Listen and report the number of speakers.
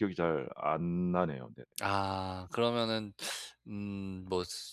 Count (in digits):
2